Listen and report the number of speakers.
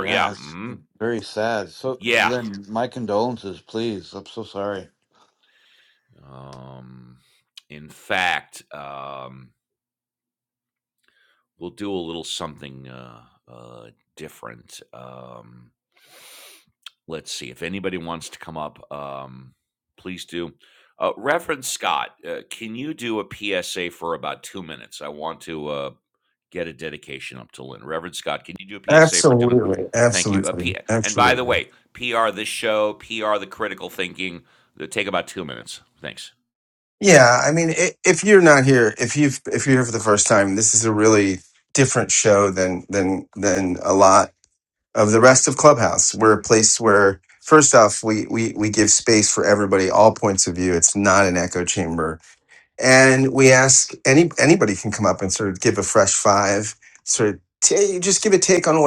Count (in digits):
3